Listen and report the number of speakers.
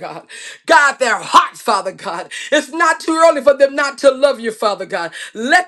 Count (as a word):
one